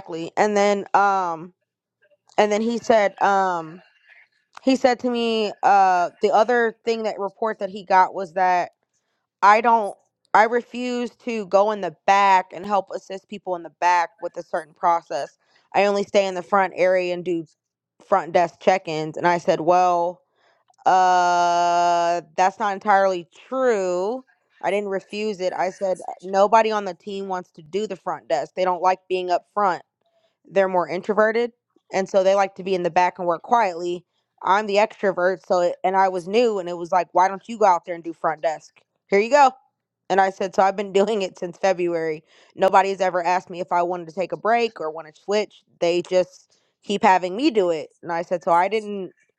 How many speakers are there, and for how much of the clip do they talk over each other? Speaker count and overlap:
one, no overlap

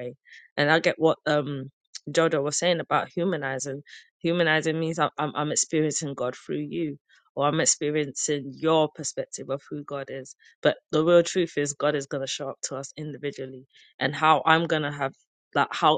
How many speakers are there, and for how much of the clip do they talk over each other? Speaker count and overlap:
one, no overlap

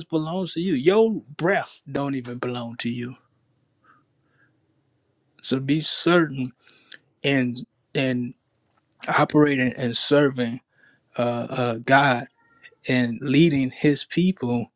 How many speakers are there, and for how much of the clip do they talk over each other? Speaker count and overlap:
one, no overlap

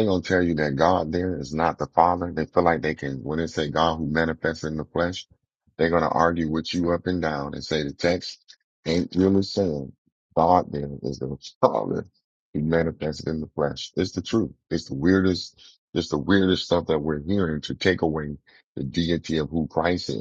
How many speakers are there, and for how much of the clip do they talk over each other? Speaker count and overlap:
one, no overlap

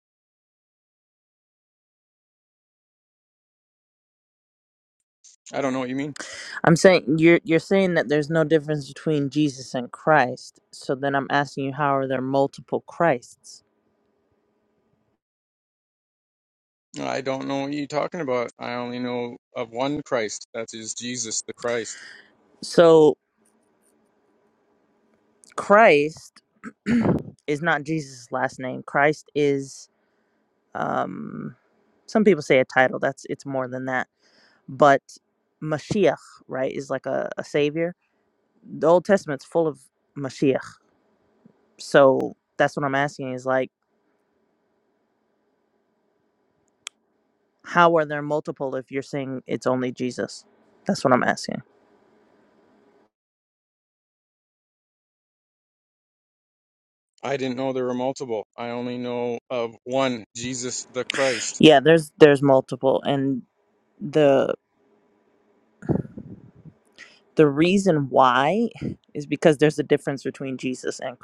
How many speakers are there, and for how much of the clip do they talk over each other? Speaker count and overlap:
two, no overlap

